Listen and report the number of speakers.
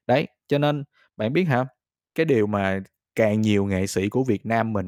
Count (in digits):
1